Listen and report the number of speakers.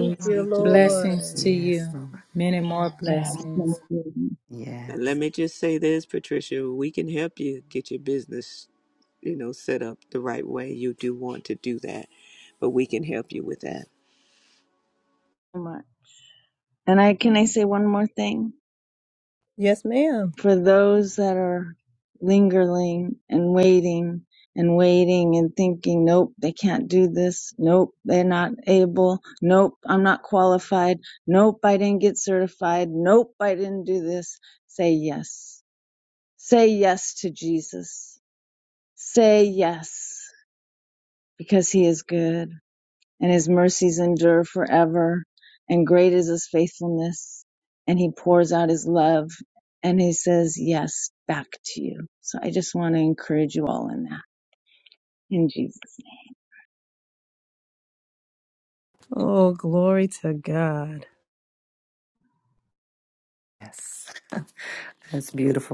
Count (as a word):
five